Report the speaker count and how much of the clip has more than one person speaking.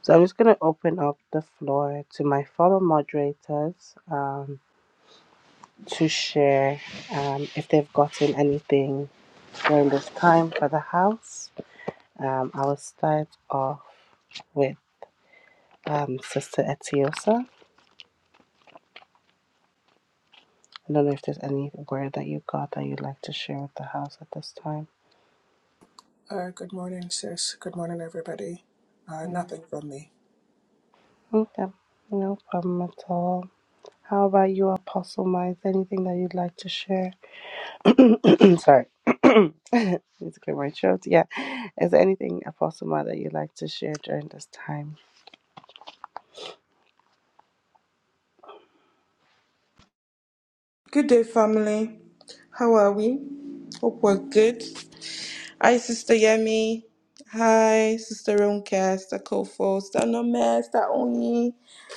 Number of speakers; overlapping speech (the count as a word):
three, under 1%